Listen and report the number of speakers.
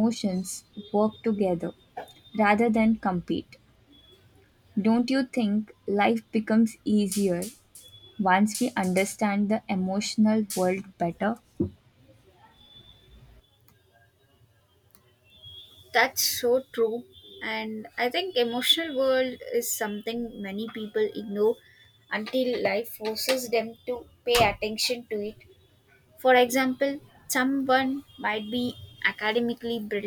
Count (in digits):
2